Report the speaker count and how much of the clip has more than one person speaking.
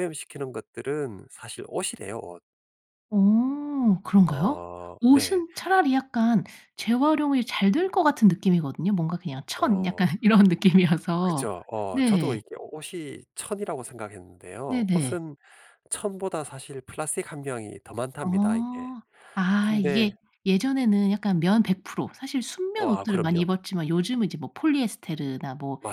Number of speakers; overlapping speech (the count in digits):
2, about 17%